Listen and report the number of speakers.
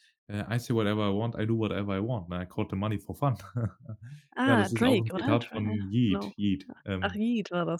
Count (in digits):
2